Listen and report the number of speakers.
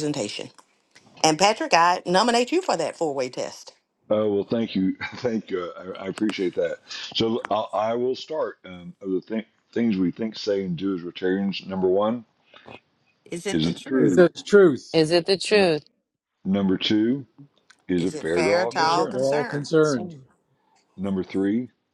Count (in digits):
4